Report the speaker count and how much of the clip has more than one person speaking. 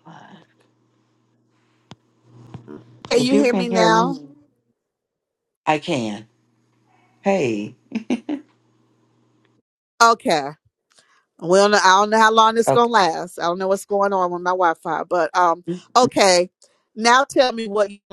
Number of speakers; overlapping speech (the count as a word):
two, about 7%